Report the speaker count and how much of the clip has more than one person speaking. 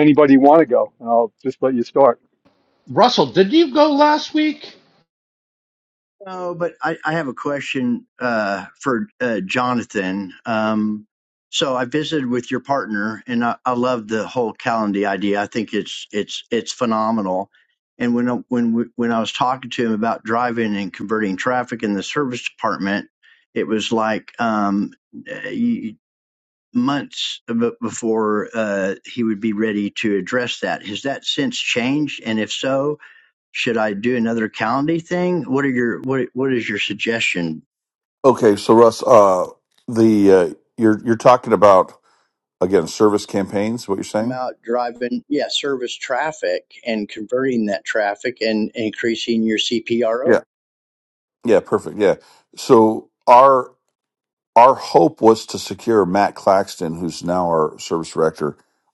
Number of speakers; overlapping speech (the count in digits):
4, under 1%